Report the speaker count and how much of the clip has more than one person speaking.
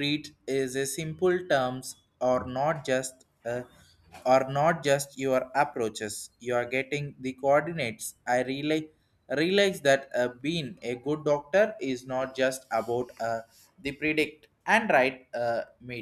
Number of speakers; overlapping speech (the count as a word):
one, no overlap